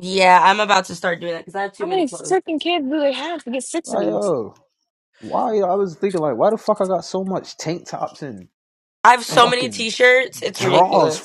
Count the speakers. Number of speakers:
3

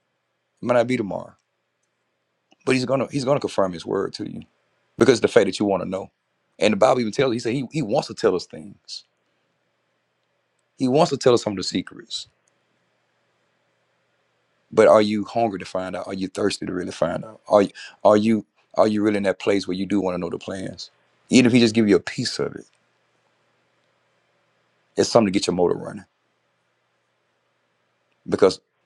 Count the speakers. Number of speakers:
1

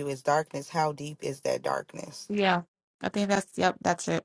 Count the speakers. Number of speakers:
2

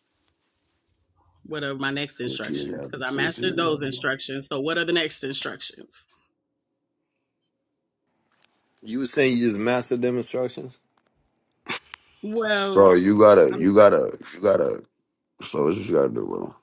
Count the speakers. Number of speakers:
3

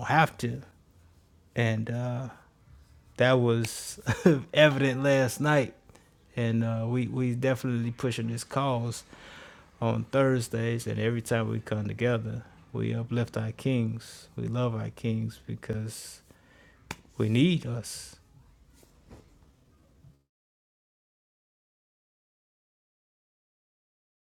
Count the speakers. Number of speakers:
1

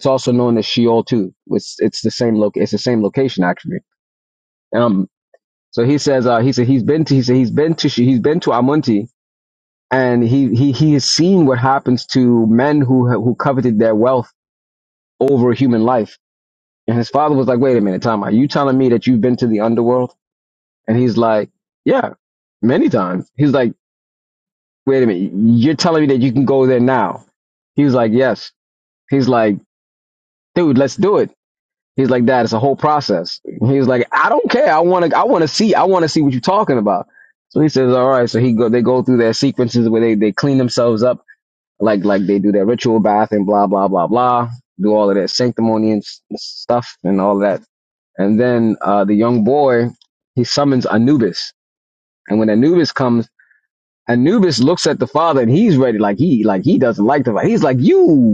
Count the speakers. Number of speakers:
1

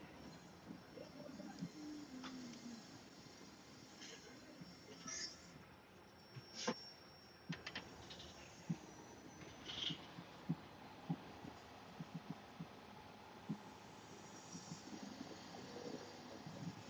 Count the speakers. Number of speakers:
0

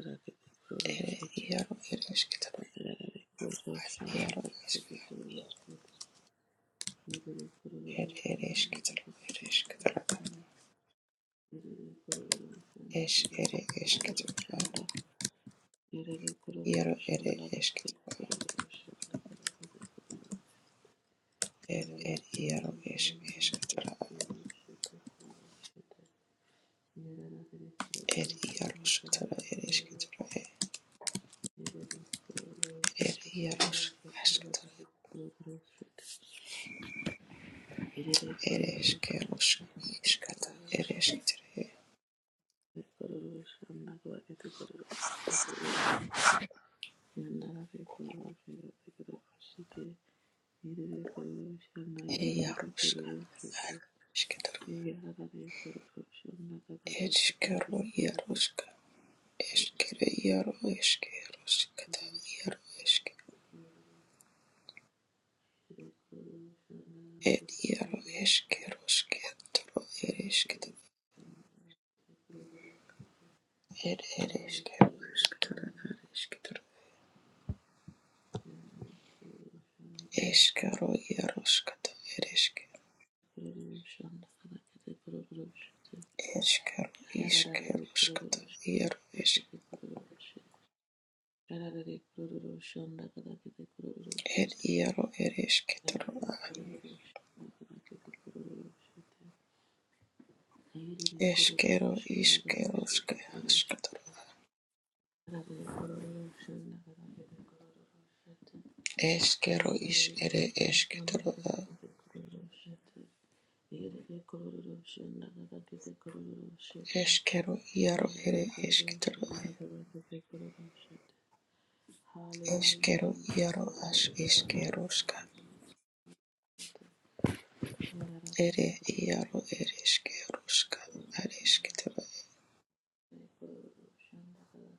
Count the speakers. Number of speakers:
2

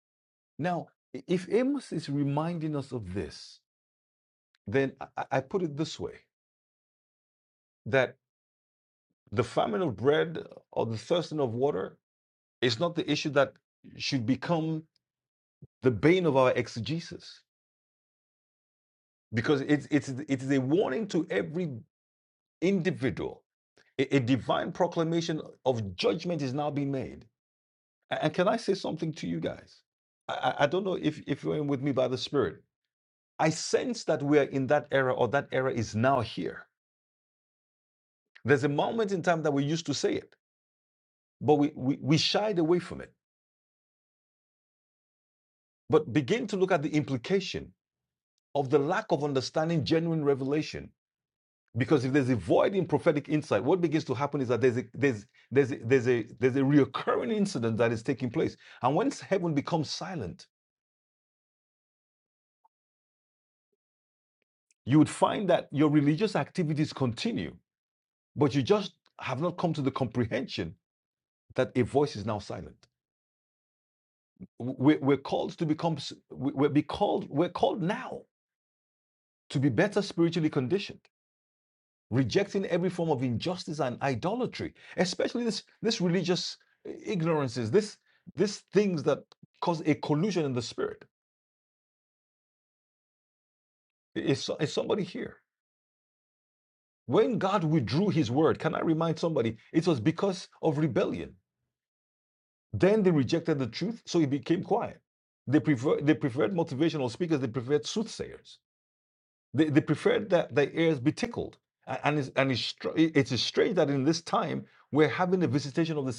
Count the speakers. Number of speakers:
1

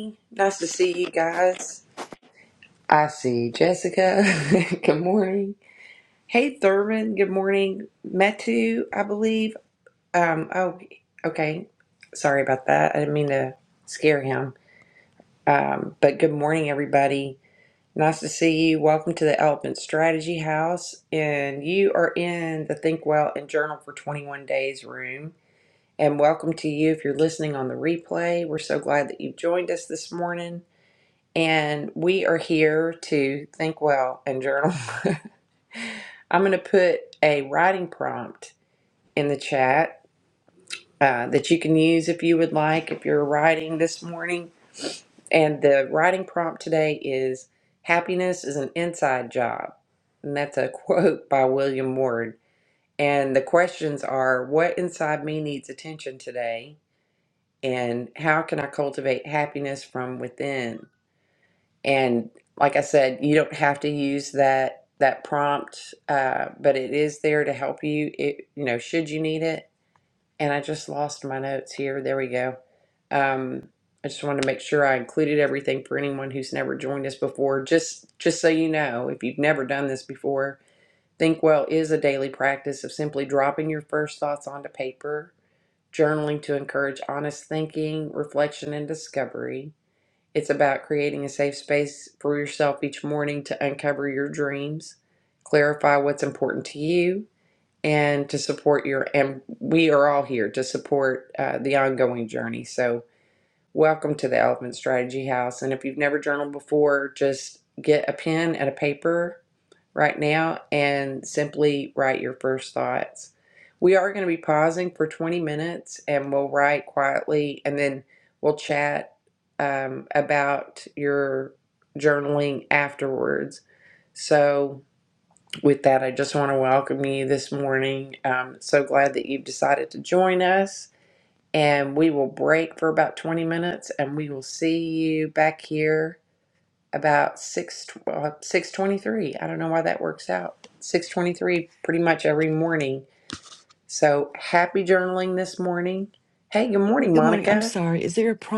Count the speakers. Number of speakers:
2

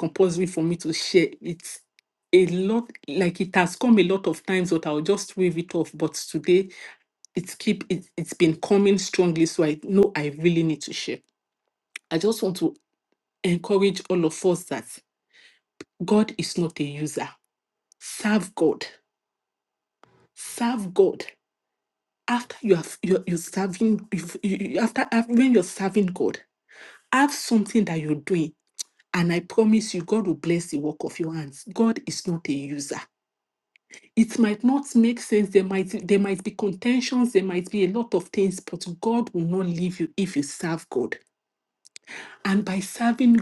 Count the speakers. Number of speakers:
1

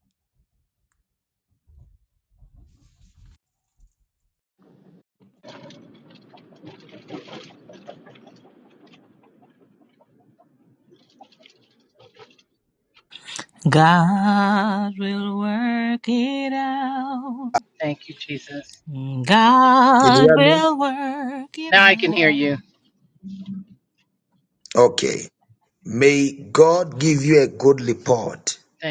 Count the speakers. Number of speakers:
3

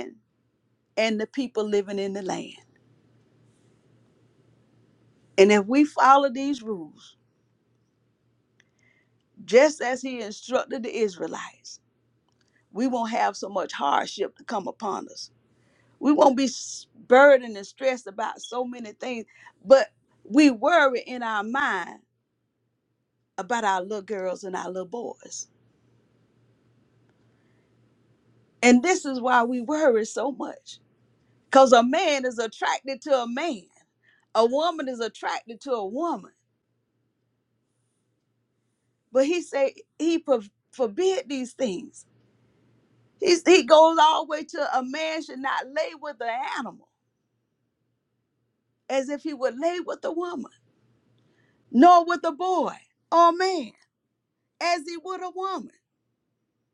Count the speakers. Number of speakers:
1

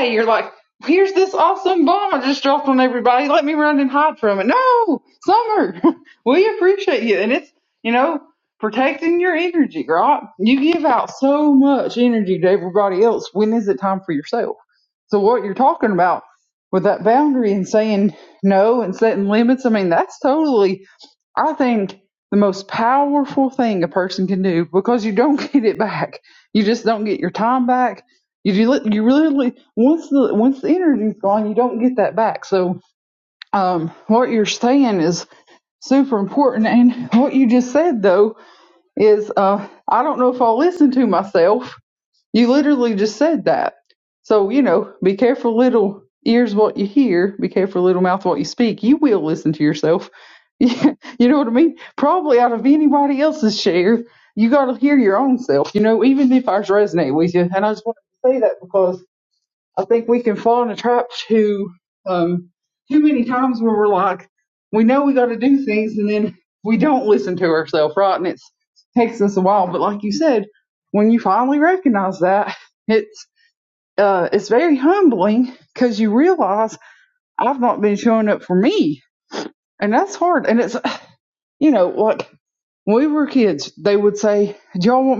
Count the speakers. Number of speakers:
1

